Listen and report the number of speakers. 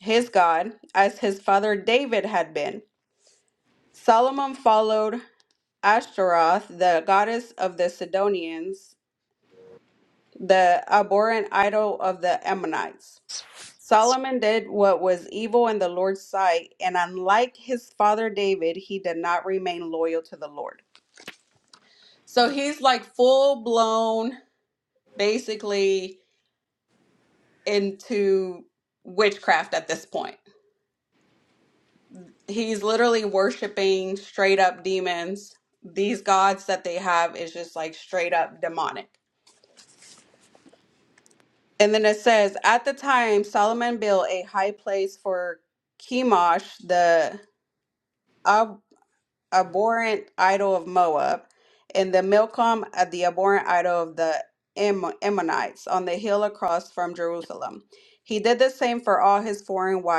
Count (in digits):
1